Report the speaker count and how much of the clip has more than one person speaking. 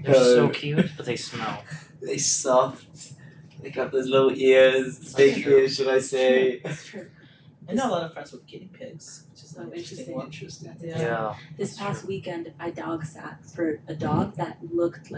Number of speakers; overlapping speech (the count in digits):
4, about 31%